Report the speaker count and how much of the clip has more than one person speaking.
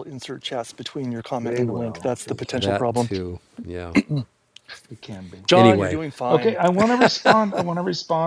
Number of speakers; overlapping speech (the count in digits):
3, about 30%